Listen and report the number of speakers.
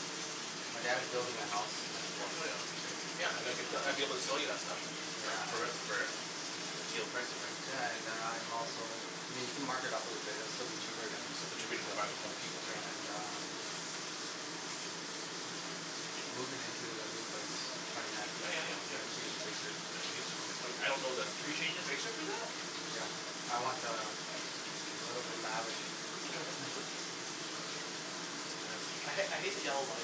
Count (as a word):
three